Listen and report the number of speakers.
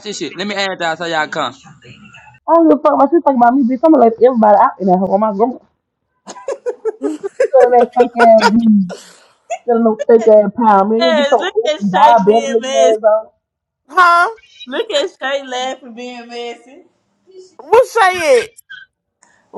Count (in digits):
4